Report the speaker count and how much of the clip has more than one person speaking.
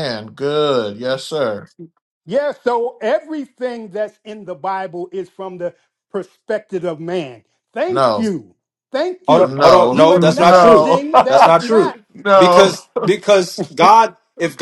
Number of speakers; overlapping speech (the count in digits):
3, about 21%